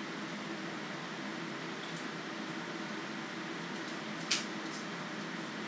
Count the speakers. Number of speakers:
zero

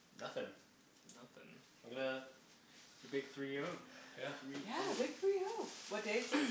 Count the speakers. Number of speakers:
three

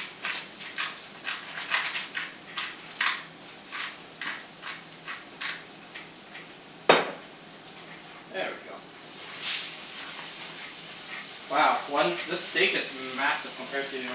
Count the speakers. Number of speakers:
one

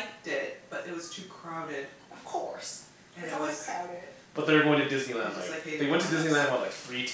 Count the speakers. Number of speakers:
three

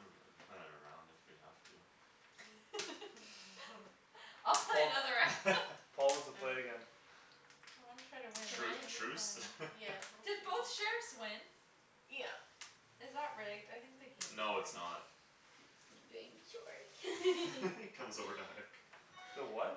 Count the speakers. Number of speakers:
four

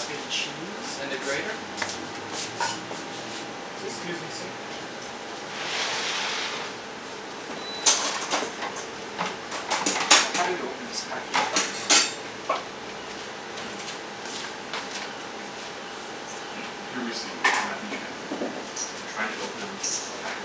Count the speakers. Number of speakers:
two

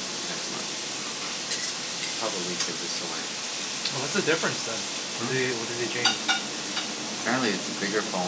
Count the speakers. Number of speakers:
two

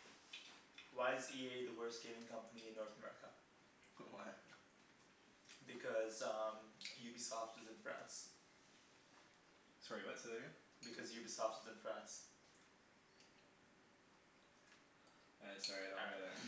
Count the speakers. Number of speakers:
two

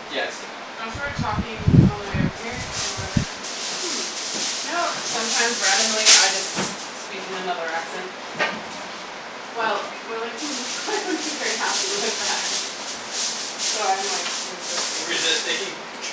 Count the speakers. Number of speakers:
two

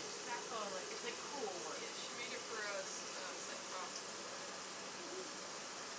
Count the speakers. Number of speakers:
two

